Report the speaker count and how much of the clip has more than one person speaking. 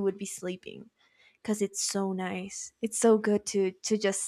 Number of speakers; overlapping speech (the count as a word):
one, no overlap